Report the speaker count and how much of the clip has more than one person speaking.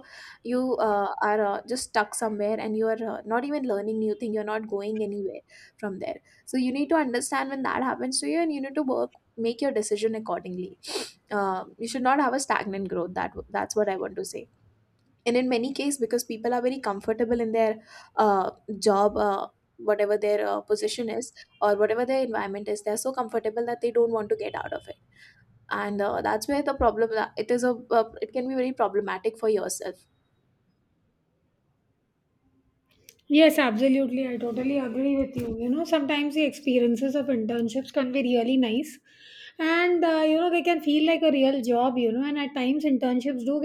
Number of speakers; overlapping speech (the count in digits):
2, no overlap